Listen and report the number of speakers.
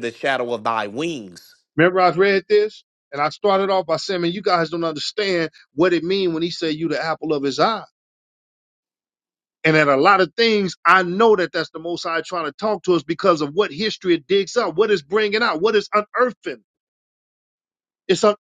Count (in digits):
2